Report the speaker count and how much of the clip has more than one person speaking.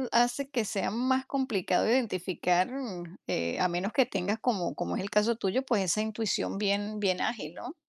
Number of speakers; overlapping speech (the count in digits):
1, no overlap